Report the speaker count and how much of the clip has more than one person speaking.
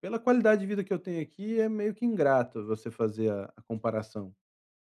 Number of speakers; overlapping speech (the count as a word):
one, no overlap